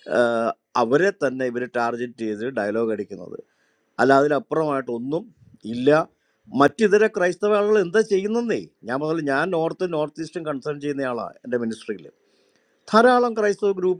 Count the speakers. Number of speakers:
1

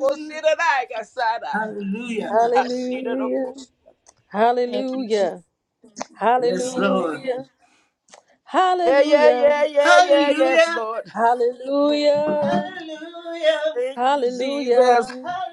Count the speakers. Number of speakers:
3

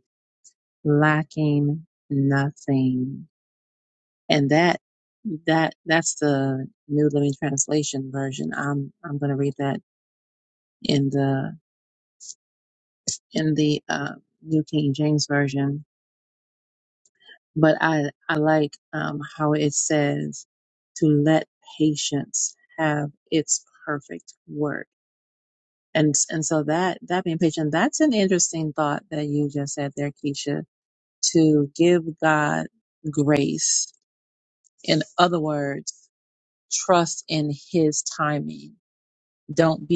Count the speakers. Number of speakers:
1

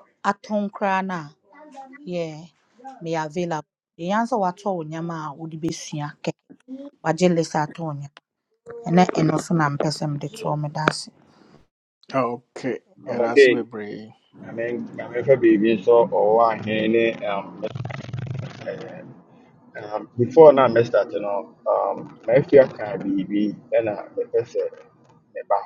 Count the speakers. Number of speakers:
3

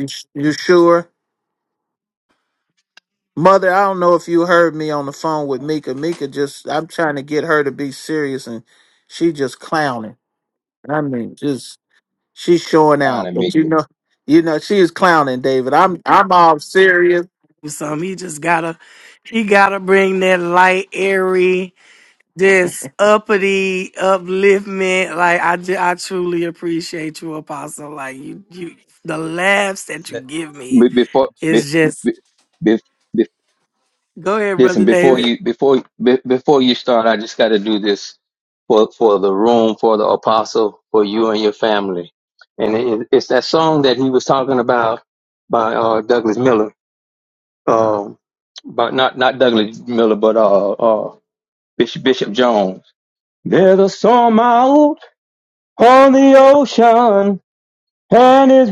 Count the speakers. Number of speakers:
3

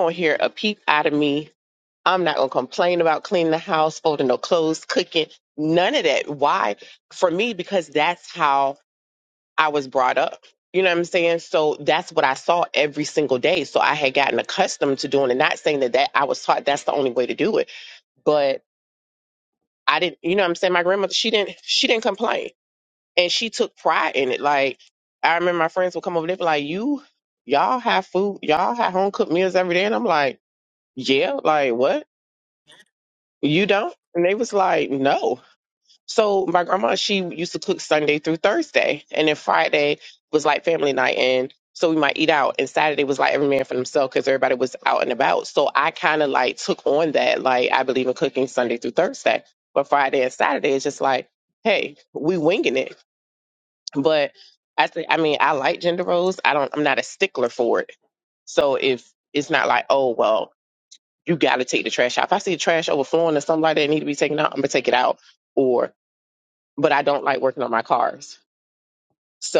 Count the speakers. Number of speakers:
1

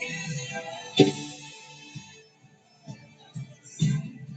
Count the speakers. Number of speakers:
0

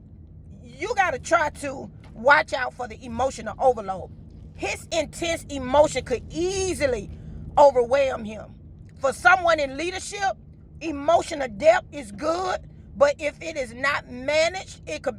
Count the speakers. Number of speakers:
1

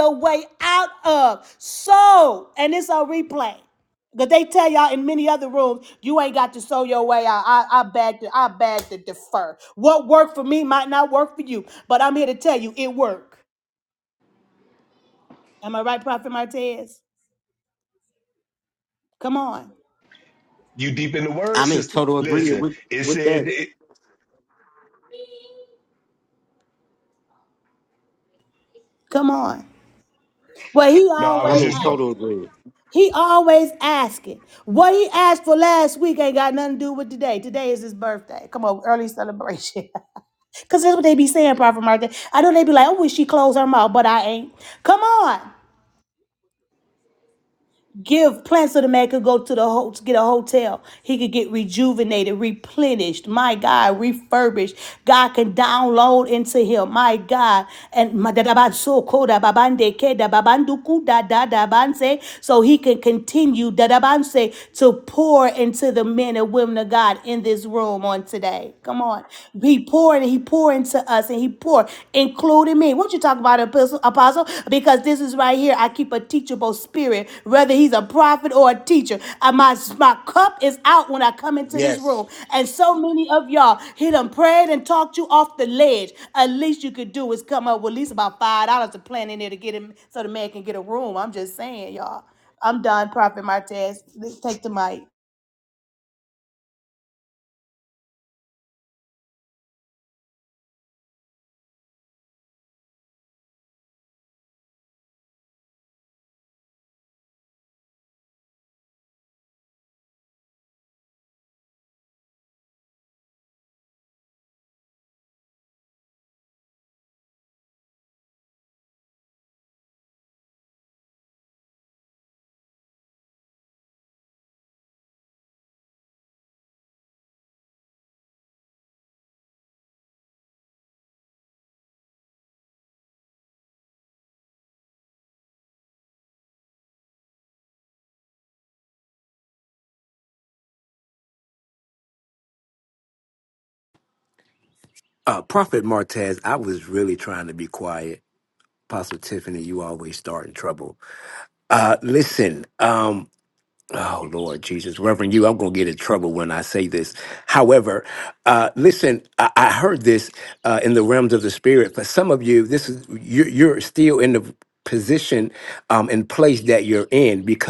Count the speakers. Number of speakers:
4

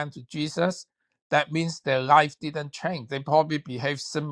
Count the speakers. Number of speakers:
1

